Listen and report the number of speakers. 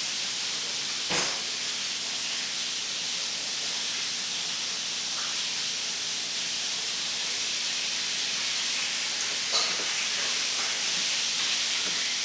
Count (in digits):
0